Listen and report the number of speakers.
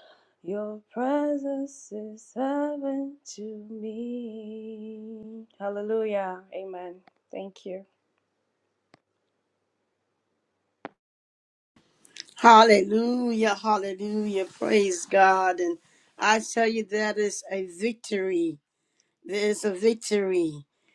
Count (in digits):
2